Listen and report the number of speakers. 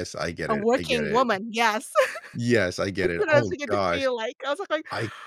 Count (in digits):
2